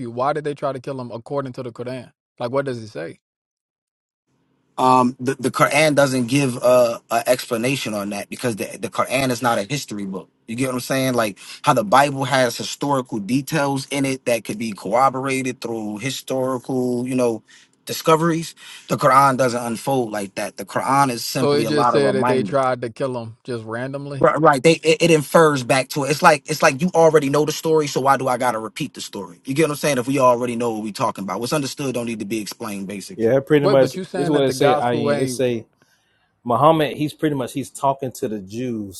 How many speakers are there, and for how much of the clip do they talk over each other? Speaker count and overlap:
3, about 8%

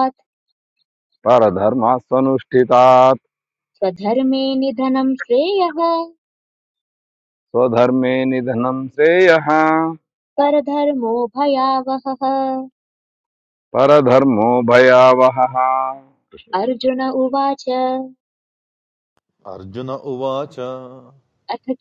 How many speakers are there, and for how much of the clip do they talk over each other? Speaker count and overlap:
3, no overlap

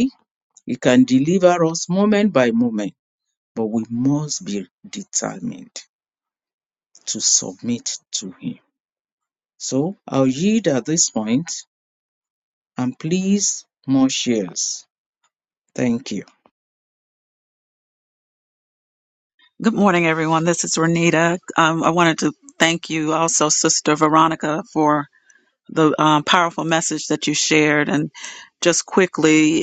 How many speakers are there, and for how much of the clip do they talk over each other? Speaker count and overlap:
2, no overlap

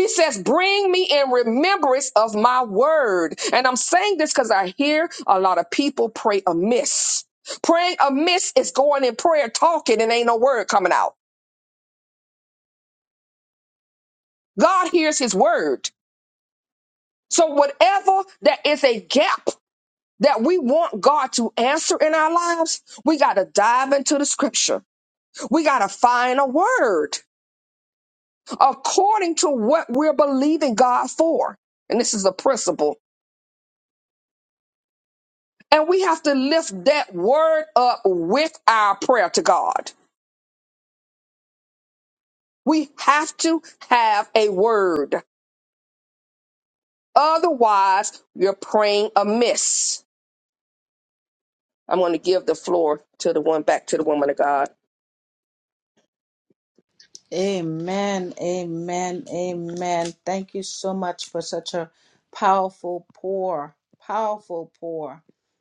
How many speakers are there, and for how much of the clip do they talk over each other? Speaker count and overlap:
2, no overlap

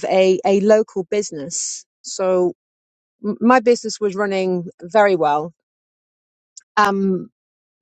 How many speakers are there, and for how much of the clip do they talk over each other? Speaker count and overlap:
1, no overlap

